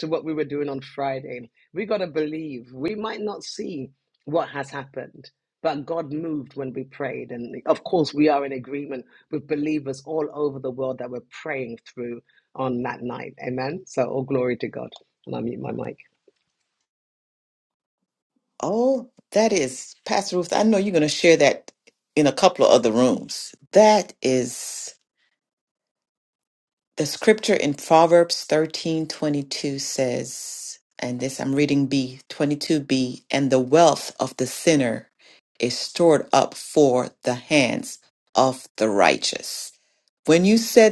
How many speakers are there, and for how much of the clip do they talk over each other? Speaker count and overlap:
two, no overlap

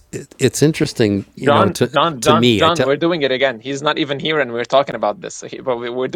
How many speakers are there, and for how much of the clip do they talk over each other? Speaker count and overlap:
two, about 24%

